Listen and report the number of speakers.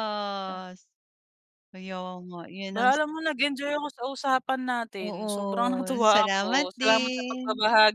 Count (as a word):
two